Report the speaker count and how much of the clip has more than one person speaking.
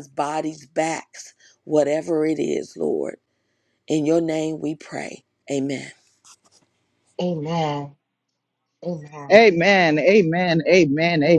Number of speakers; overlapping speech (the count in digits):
3, about 3%